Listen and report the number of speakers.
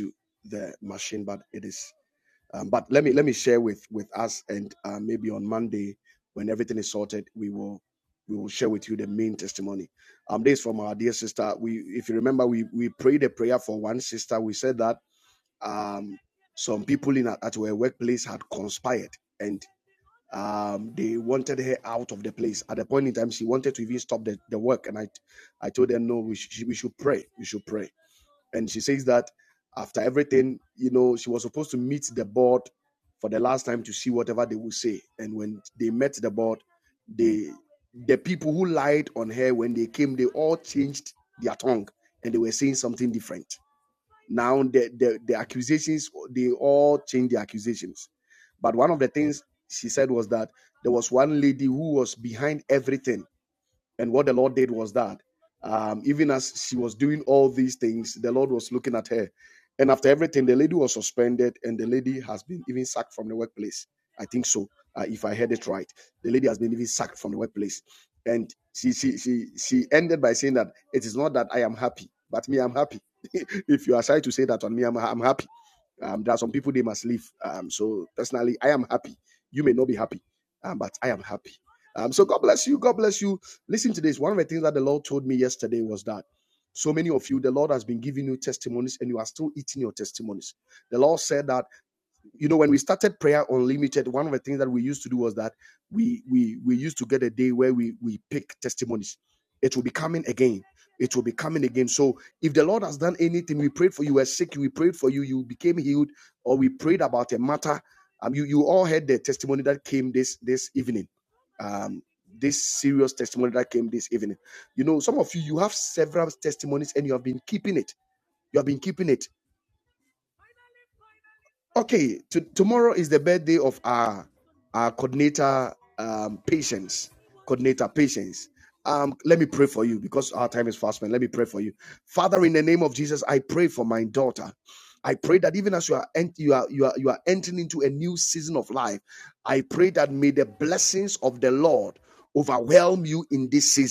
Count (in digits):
1